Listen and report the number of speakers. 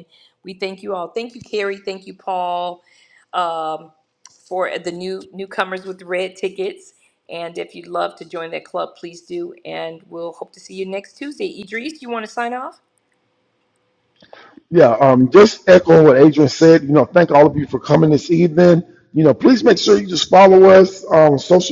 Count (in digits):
2